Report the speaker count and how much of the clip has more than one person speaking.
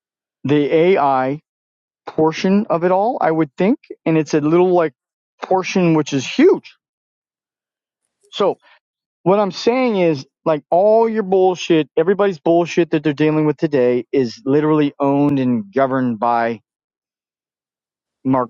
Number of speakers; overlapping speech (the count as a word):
one, no overlap